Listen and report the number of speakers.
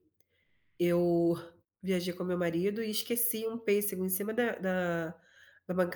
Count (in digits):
1